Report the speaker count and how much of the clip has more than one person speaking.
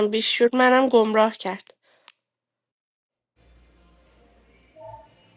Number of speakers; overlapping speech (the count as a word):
one, no overlap